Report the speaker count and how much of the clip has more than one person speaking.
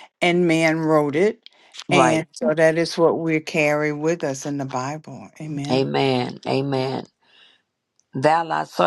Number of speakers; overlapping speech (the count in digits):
2, about 5%